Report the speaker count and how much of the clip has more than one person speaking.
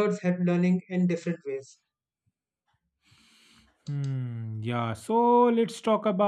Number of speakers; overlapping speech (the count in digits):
2, no overlap